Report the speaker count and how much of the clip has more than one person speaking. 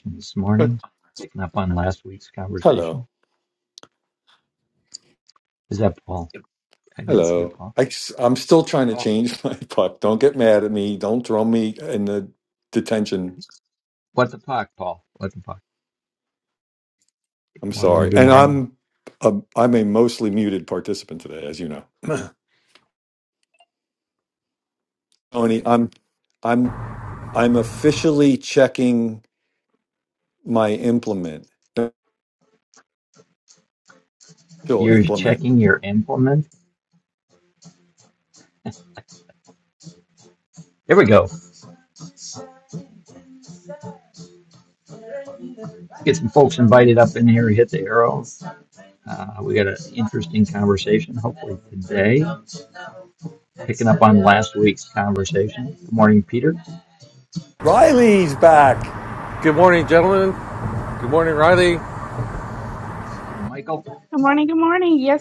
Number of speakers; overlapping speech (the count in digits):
4, about 4%